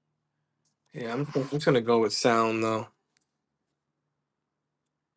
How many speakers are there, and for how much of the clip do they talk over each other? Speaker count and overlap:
1, no overlap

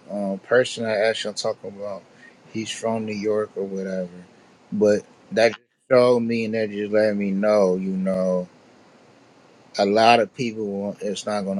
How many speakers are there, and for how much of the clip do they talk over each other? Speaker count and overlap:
1, no overlap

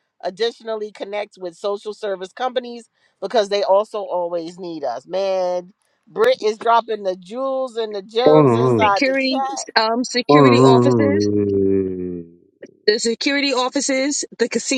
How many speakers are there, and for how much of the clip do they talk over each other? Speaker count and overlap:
3, about 16%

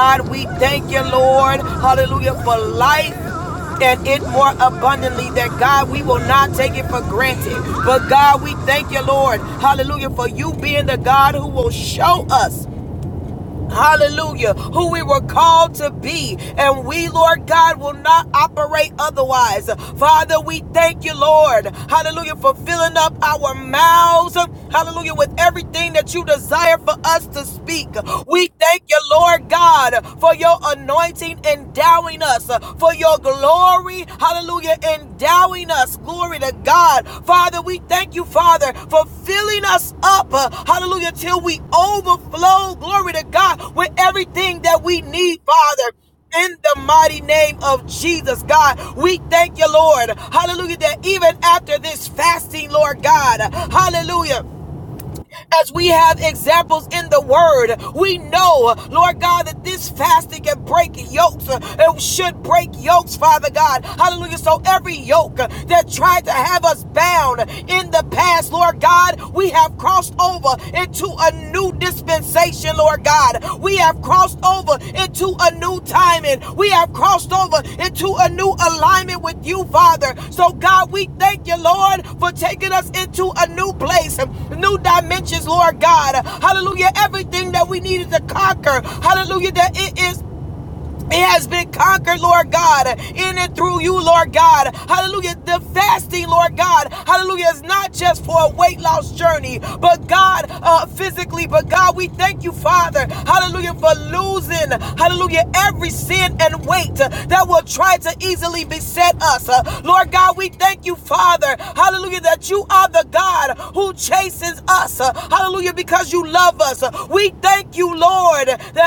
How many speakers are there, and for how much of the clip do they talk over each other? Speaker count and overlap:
1, no overlap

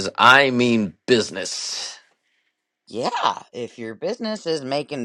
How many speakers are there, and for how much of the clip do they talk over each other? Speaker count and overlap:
2, no overlap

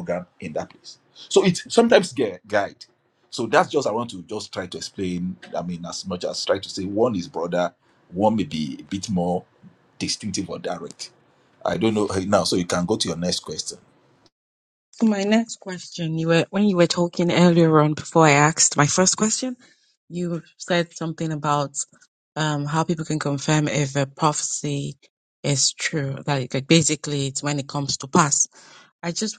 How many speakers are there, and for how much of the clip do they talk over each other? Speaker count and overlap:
2, no overlap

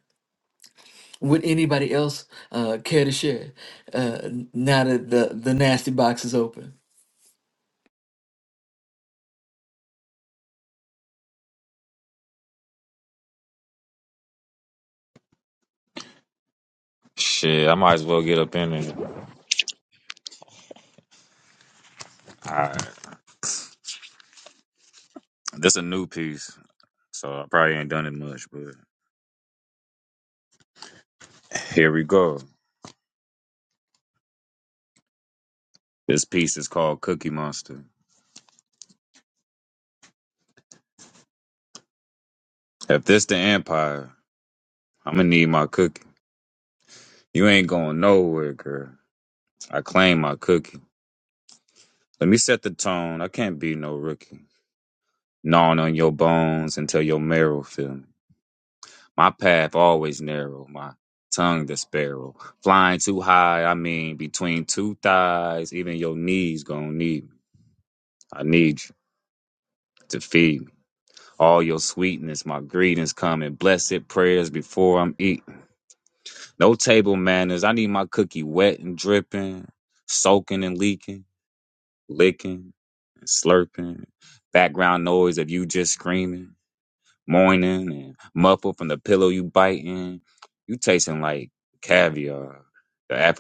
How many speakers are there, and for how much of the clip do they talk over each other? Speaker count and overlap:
2, no overlap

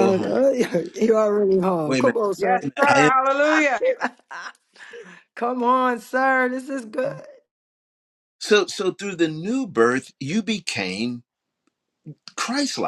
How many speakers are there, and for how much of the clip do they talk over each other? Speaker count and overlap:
3, about 9%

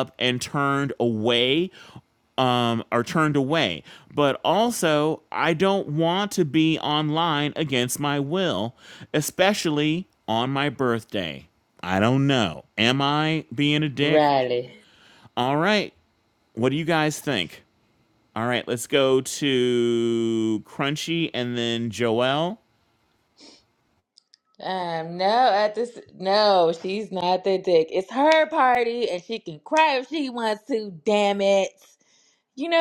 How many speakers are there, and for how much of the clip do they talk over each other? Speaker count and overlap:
2, about 1%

